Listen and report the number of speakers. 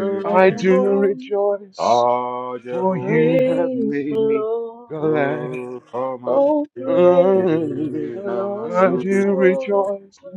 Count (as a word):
three